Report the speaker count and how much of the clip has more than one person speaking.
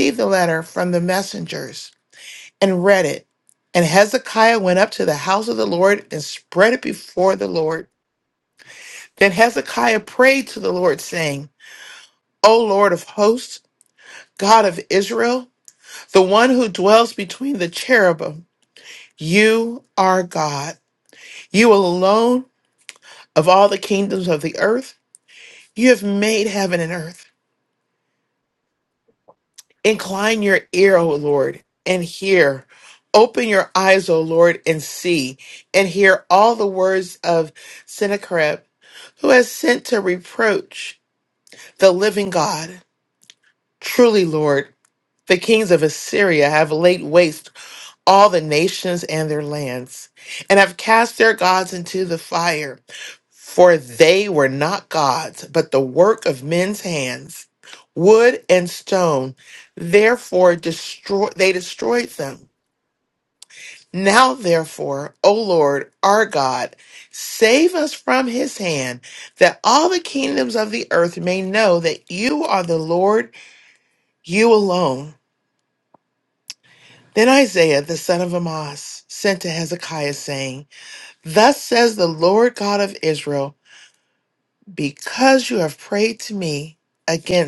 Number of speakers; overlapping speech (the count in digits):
1, no overlap